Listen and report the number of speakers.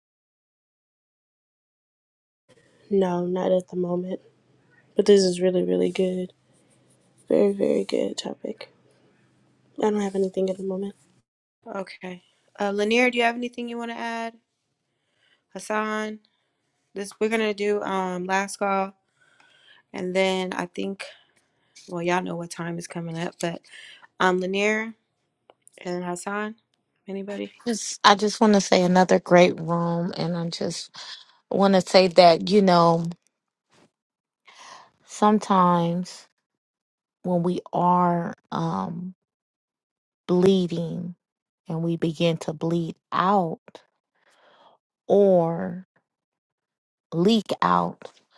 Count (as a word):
three